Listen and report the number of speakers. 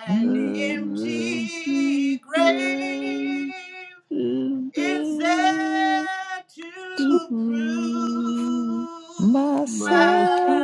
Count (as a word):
three